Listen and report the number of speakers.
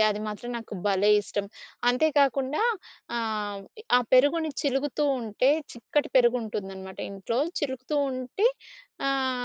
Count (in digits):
1